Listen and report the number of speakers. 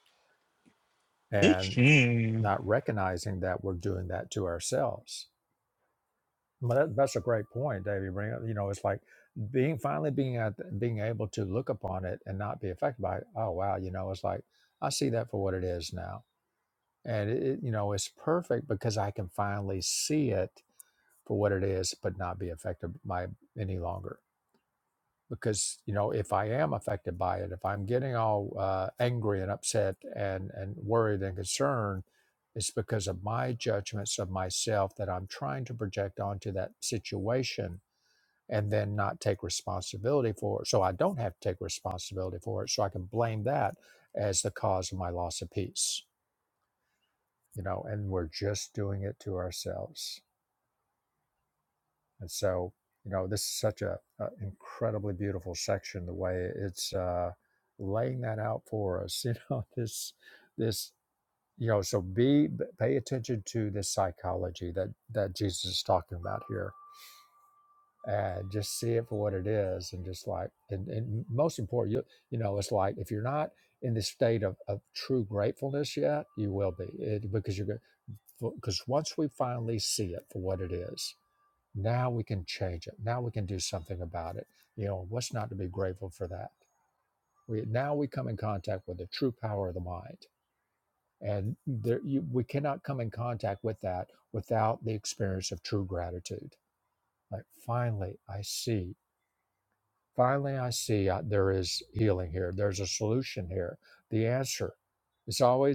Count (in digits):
2